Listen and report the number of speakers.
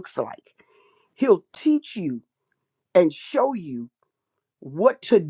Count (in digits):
1